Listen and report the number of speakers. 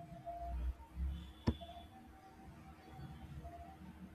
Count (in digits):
0